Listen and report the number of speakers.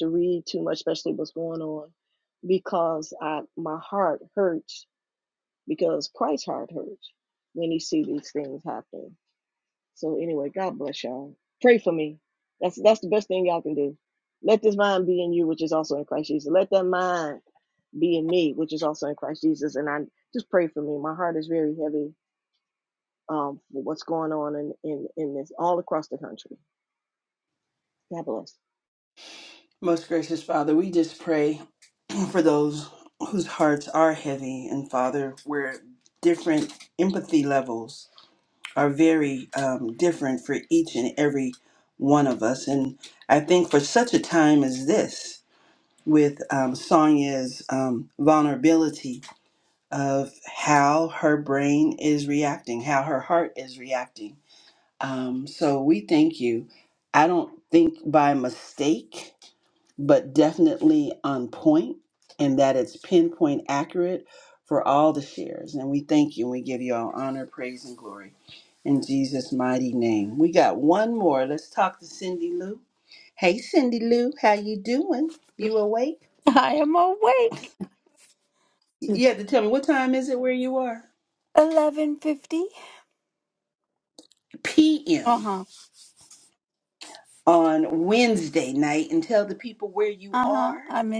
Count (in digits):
3